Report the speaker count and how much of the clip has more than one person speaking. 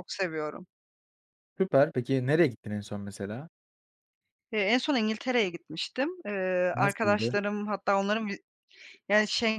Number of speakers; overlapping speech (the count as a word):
two, about 6%